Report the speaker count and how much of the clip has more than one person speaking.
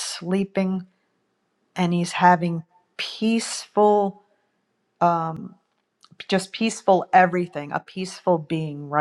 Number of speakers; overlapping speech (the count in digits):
1, no overlap